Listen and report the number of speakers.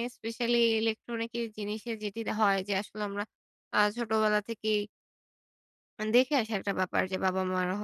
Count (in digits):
1